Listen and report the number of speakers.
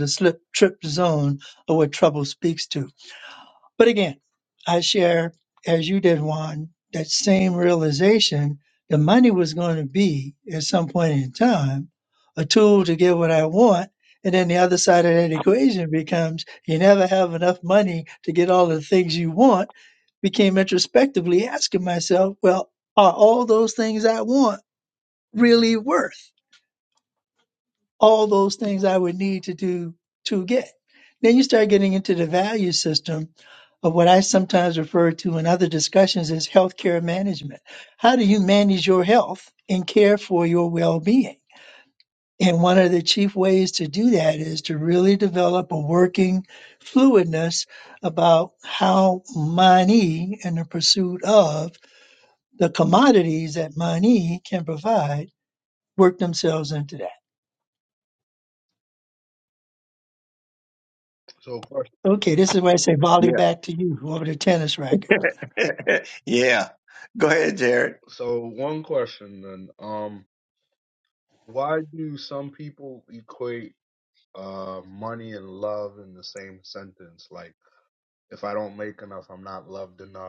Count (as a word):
three